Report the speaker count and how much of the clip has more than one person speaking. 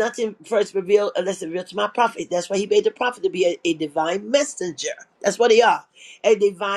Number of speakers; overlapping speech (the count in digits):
1, no overlap